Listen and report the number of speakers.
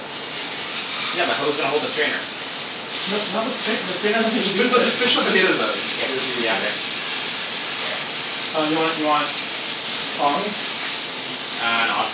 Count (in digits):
3